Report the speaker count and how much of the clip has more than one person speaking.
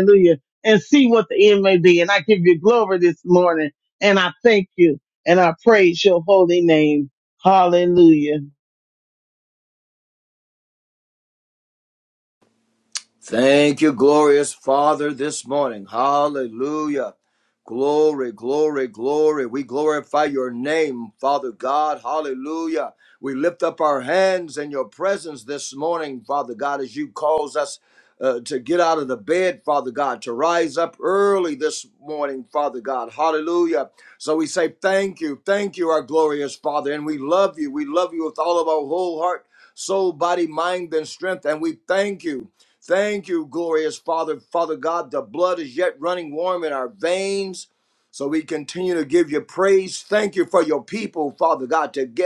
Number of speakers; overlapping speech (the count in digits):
2, no overlap